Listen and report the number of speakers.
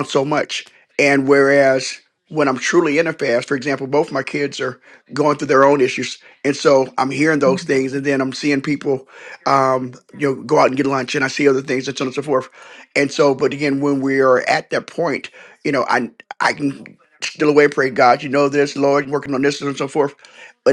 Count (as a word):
one